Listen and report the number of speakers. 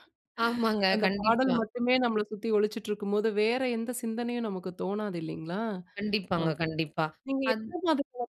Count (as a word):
two